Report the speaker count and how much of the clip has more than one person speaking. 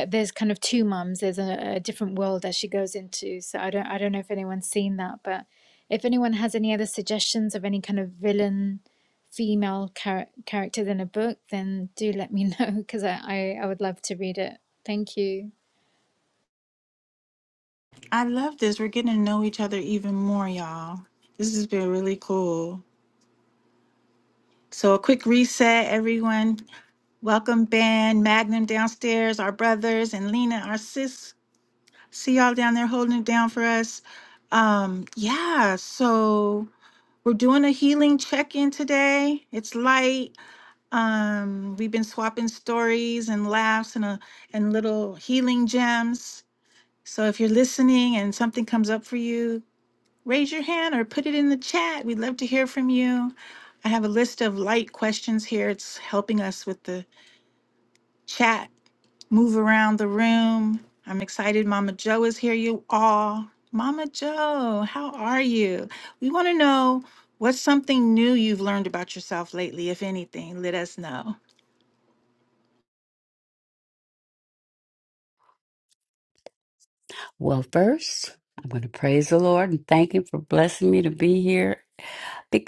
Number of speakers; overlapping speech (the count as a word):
three, no overlap